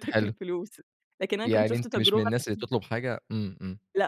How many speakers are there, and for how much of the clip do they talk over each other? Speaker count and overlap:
two, about 28%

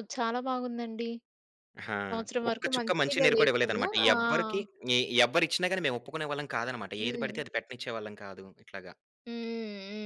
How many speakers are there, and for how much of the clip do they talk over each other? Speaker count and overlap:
two, about 21%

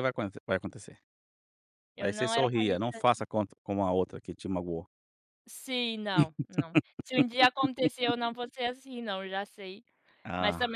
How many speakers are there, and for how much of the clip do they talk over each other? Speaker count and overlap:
two, about 13%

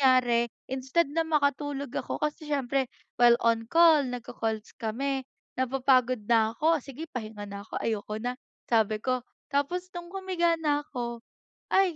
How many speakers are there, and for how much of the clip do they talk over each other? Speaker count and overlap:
one, no overlap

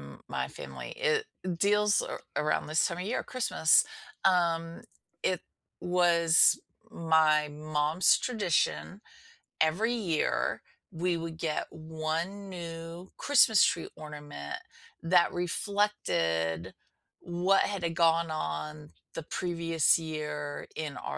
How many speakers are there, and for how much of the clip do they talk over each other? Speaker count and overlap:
one, no overlap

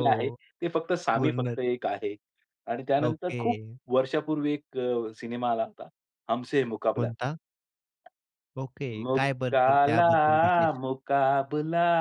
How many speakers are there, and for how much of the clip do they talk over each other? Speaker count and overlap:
two, about 21%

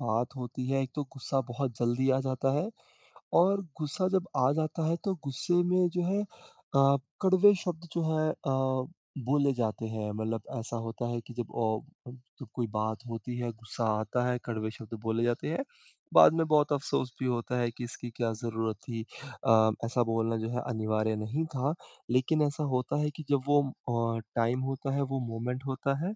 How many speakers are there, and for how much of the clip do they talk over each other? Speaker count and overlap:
one, no overlap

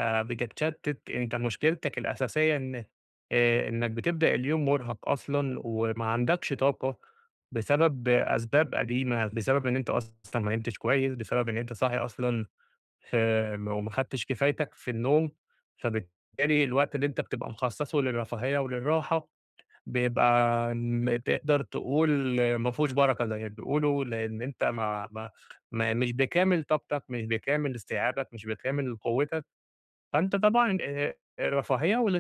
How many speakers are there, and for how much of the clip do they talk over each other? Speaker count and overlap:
one, no overlap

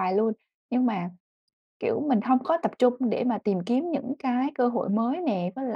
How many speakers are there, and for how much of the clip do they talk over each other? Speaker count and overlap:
one, no overlap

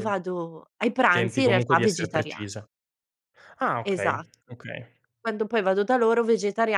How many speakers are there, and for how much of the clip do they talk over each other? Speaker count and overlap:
two, about 26%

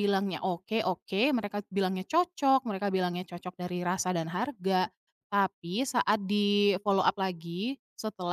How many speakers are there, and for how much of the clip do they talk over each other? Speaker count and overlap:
one, no overlap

